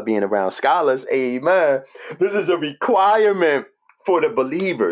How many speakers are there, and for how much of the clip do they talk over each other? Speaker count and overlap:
1, no overlap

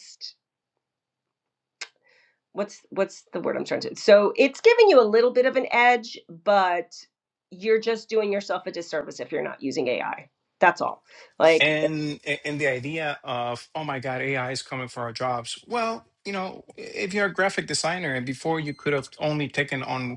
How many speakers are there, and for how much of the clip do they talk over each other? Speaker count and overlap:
2, under 1%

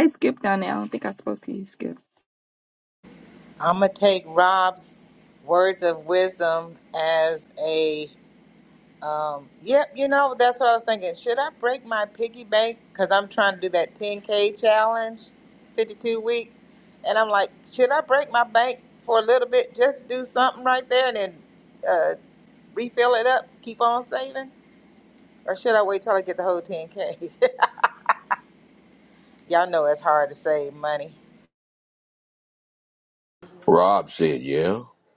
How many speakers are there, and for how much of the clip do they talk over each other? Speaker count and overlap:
3, no overlap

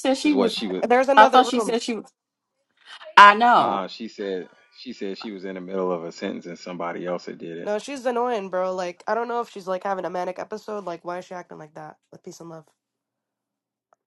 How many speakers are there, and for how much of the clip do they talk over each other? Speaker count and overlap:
3, about 9%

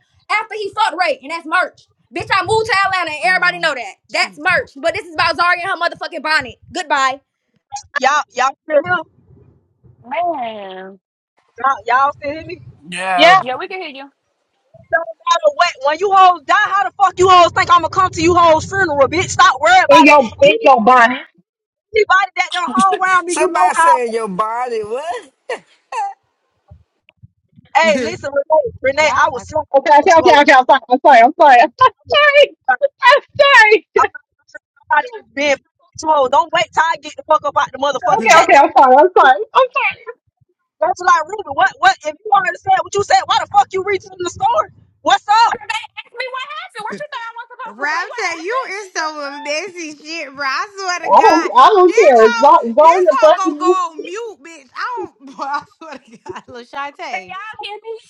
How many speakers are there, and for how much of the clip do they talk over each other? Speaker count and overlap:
6, about 12%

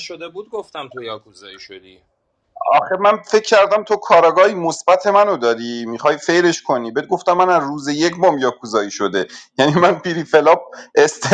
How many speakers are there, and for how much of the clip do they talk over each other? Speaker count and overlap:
2, no overlap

